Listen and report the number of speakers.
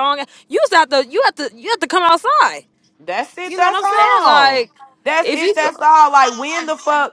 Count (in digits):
2